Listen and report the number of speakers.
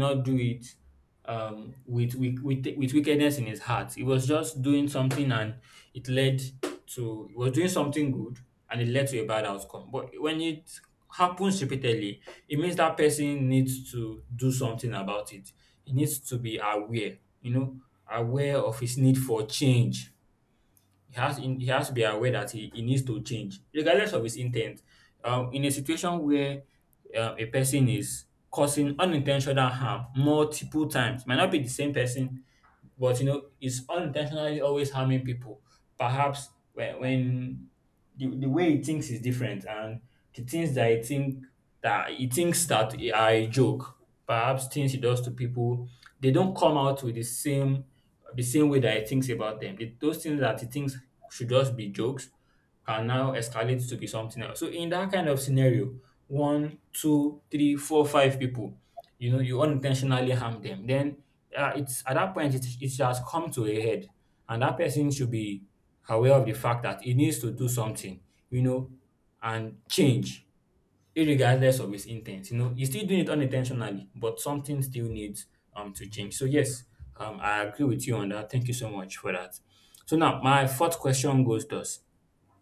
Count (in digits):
1